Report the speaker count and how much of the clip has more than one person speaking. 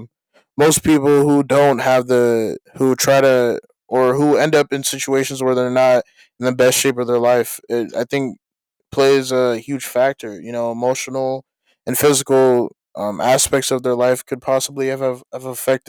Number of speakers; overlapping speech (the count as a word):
one, no overlap